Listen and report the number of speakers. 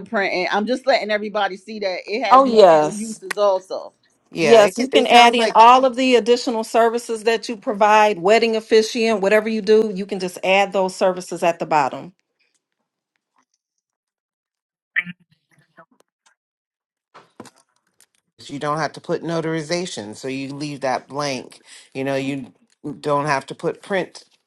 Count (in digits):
3